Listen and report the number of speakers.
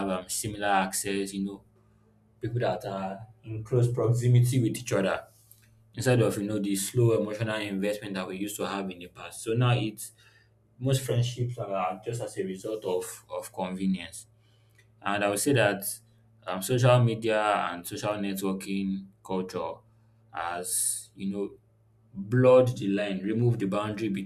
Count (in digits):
1